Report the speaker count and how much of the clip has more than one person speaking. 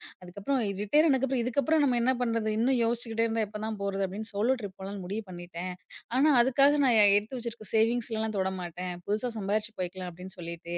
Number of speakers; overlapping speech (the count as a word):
one, no overlap